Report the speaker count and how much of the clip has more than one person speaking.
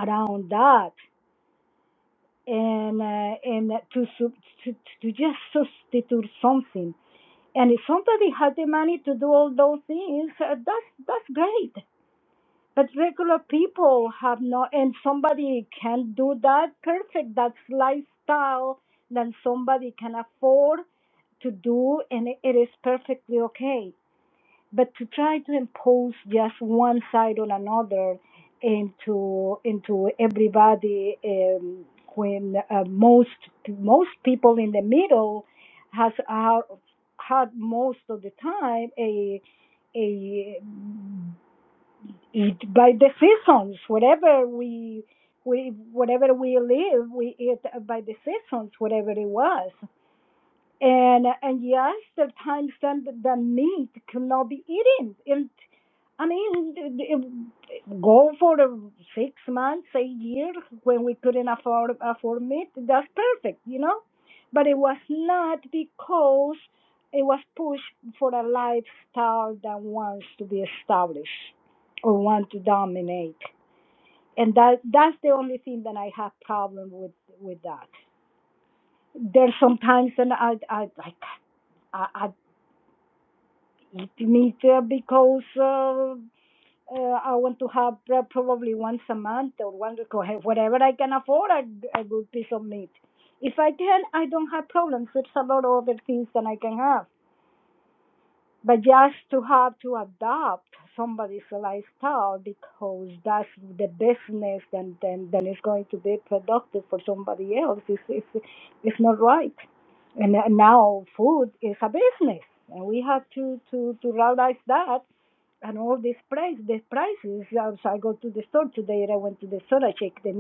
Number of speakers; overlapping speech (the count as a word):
one, no overlap